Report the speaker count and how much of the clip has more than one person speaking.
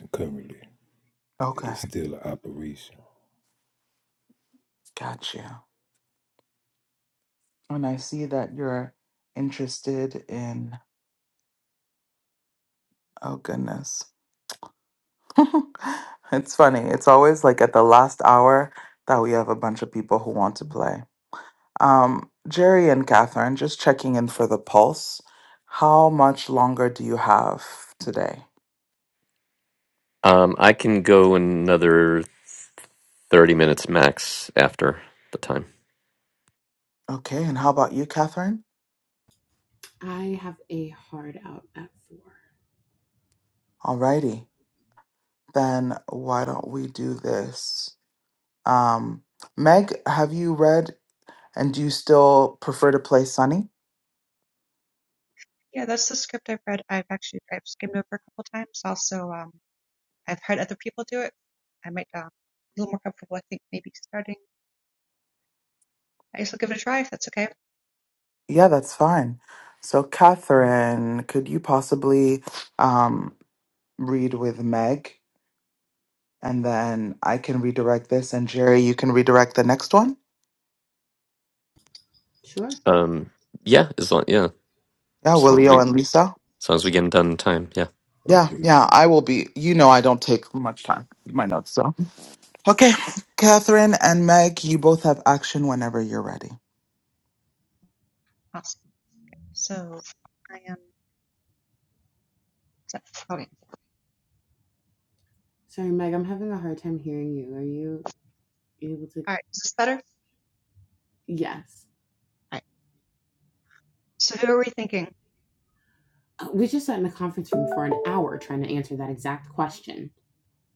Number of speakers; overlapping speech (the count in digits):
5, about 1%